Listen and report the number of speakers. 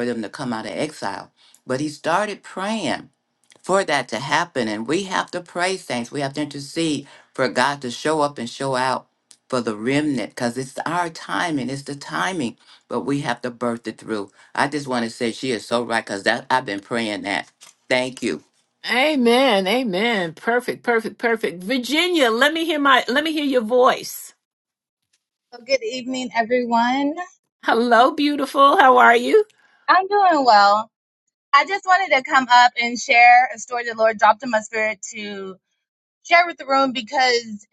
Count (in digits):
3